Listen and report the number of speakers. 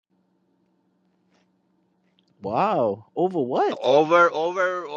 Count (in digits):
2